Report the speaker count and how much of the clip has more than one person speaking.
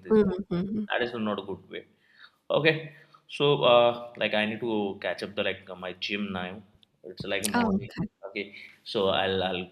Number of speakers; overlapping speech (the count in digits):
2, about 7%